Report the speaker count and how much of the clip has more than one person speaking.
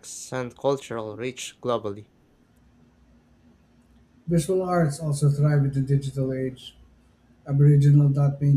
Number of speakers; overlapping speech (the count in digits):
2, no overlap